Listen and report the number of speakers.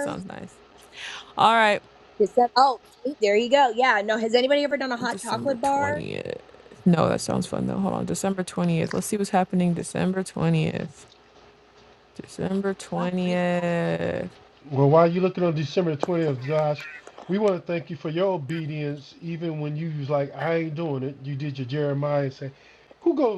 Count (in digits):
3